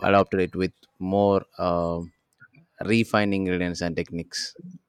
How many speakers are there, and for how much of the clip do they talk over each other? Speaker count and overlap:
one, no overlap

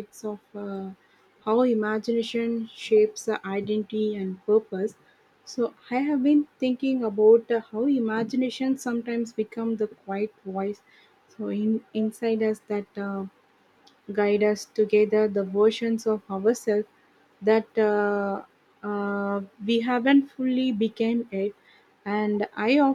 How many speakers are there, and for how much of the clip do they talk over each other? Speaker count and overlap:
one, no overlap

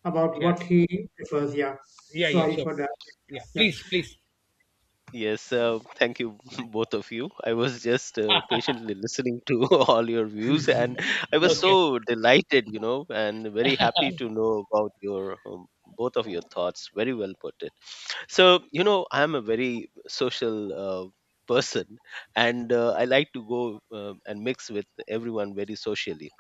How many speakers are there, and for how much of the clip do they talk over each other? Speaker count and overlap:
three, about 5%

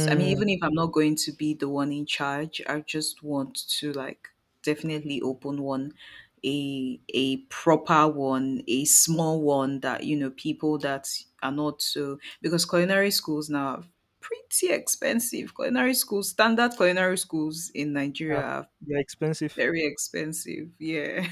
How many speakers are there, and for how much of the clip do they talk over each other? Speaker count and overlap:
two, about 3%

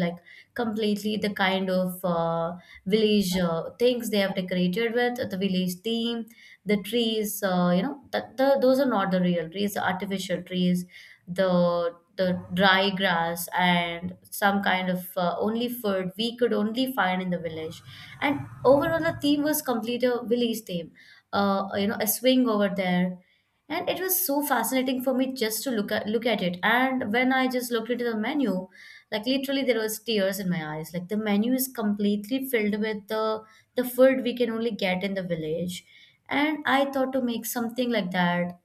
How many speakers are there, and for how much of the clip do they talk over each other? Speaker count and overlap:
one, no overlap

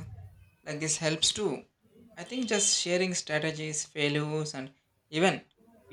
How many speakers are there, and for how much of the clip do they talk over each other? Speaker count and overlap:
one, no overlap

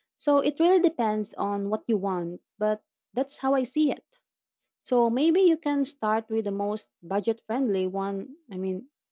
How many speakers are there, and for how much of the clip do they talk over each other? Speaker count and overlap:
one, no overlap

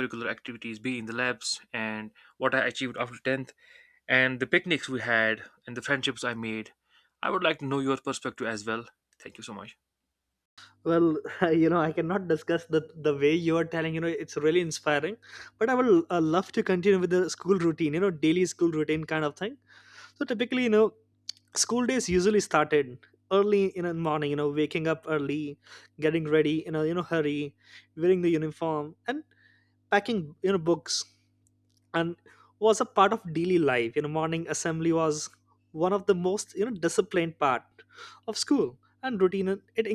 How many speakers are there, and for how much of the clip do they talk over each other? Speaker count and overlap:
two, no overlap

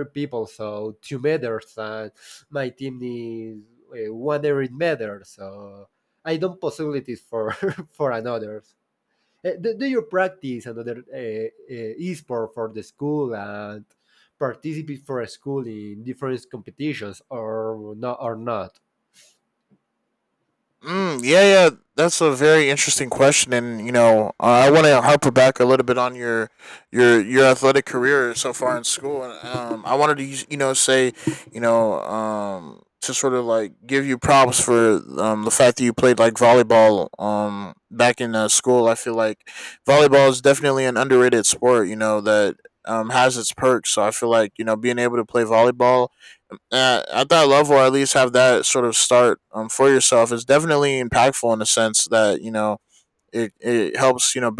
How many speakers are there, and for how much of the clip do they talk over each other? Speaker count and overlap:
two, no overlap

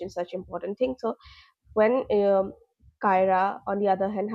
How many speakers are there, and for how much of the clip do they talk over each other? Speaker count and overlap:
one, no overlap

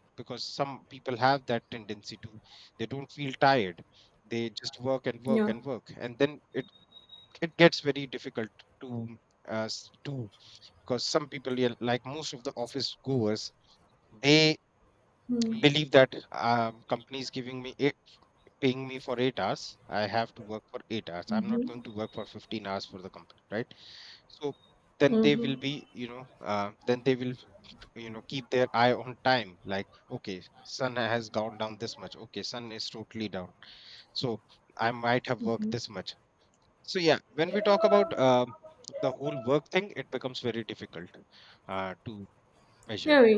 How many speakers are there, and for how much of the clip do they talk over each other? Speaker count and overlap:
two, about 2%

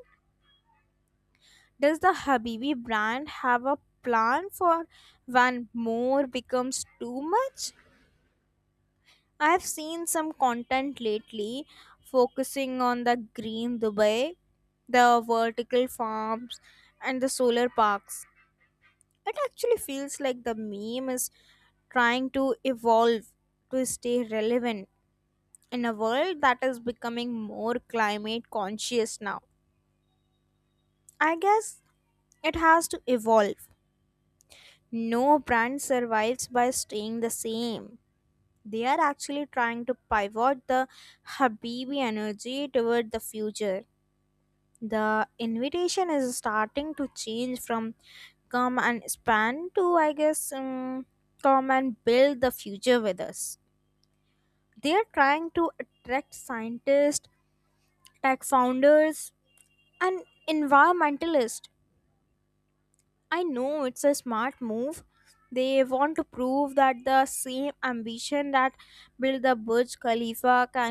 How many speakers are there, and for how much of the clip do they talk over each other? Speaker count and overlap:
one, no overlap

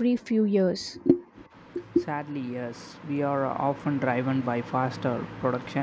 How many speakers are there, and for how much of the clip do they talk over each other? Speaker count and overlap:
two, no overlap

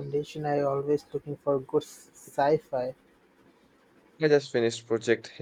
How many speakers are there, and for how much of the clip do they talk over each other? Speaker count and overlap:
two, no overlap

